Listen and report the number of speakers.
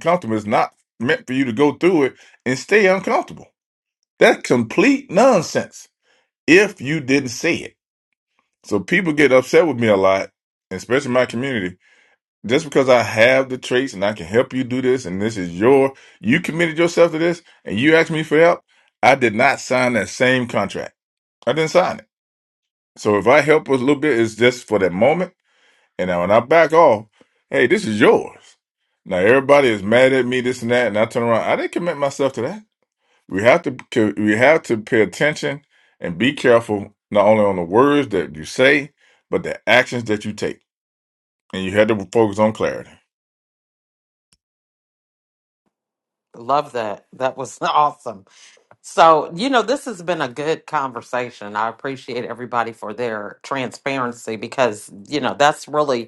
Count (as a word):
two